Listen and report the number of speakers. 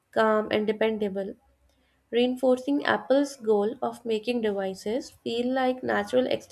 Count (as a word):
one